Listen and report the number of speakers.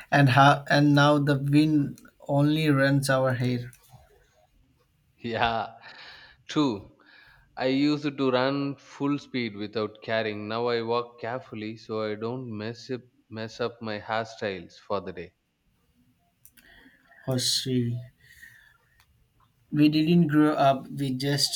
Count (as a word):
two